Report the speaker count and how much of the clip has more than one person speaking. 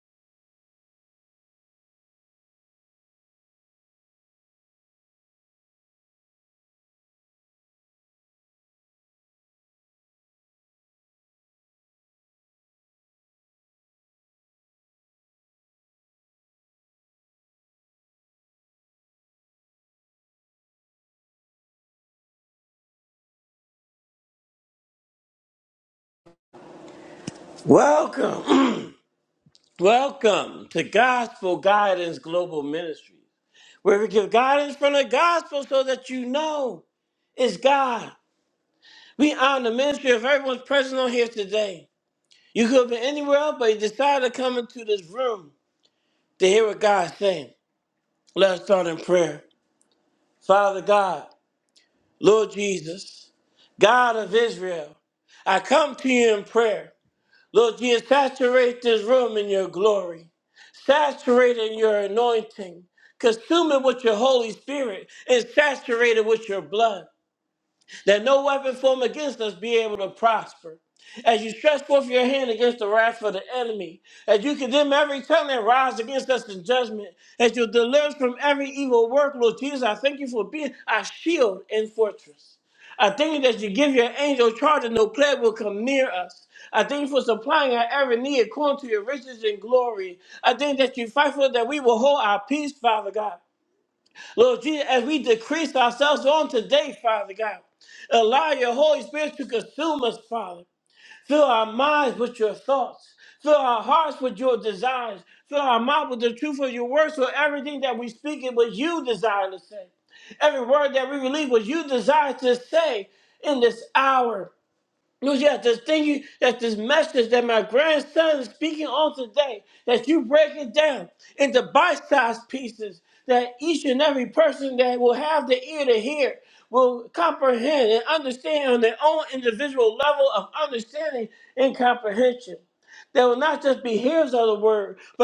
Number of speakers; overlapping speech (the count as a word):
one, no overlap